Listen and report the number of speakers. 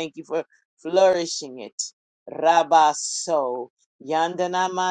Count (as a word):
one